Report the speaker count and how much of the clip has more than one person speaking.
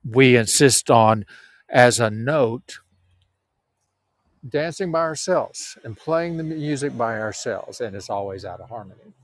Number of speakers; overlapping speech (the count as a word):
one, no overlap